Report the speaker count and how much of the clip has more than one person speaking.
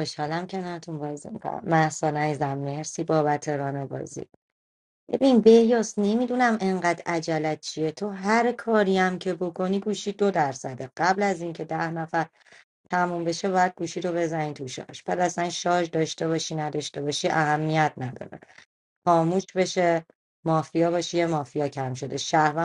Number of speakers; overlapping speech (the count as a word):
one, no overlap